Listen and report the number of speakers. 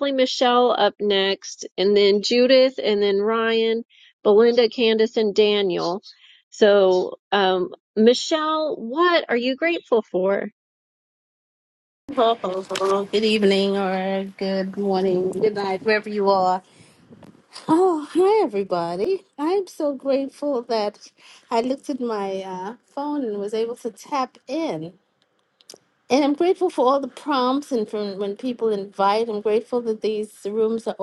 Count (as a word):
two